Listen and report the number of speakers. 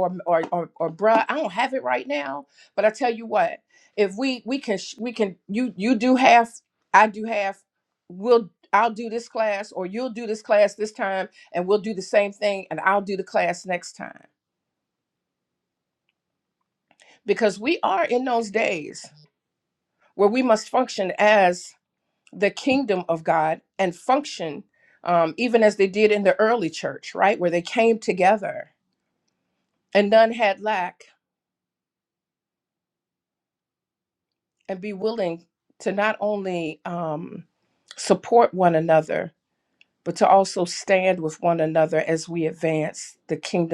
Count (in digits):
1